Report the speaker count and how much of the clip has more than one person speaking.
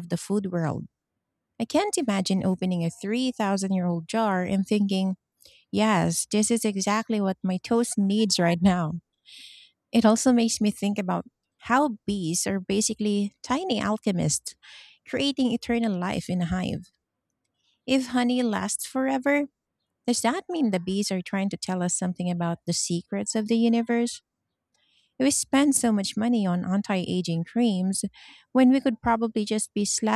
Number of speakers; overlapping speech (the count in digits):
1, no overlap